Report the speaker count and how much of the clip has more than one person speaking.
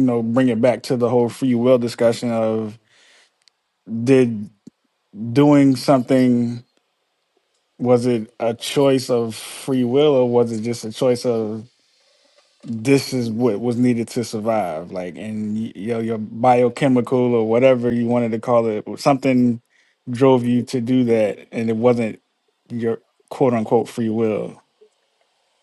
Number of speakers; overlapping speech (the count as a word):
one, no overlap